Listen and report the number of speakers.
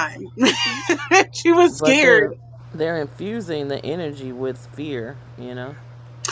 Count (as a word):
two